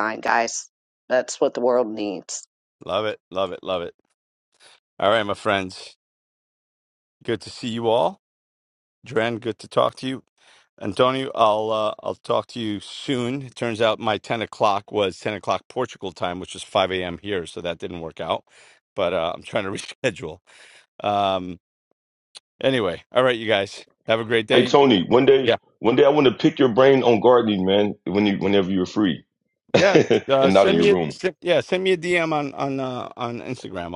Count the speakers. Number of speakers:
3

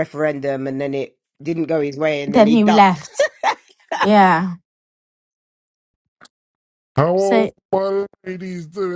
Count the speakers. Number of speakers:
3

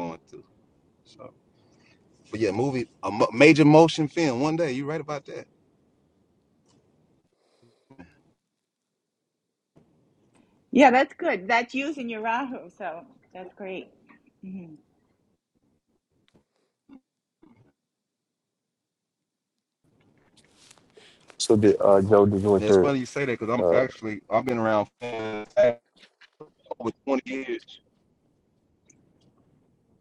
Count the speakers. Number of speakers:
3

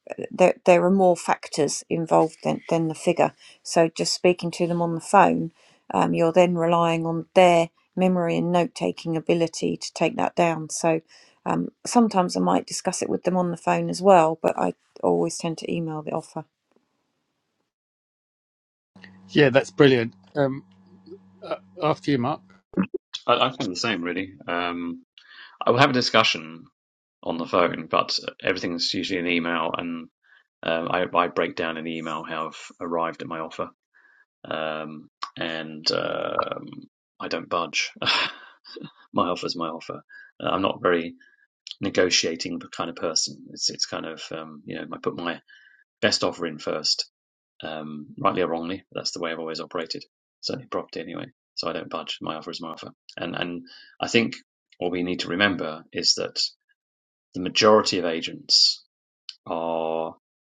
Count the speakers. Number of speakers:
3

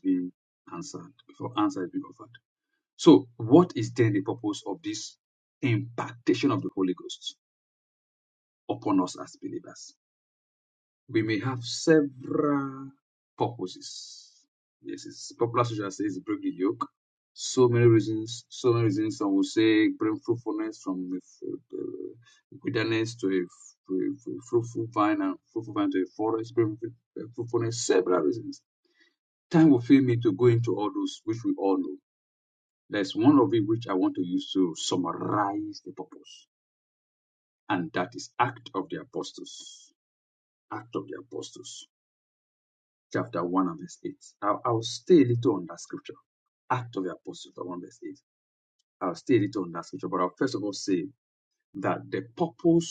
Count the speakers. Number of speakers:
1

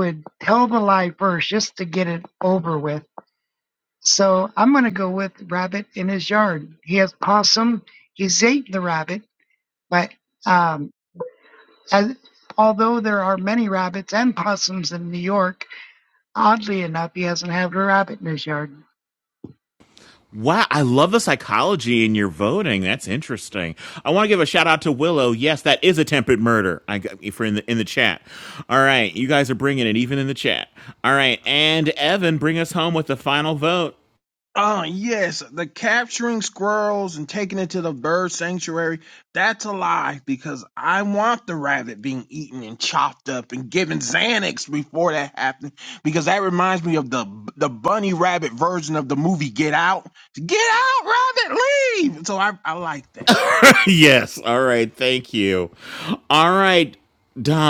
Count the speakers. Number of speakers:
3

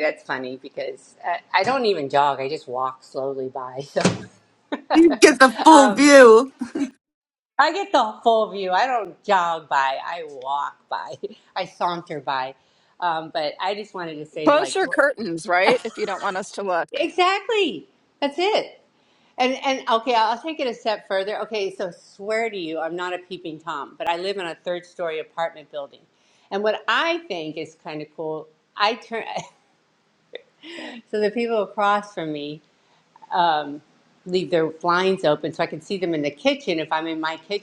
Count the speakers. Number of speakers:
3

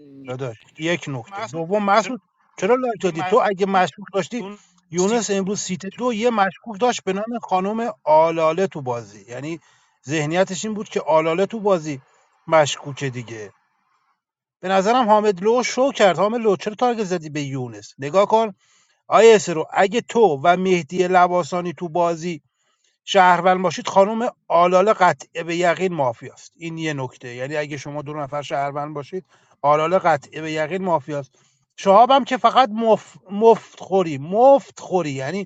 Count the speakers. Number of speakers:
1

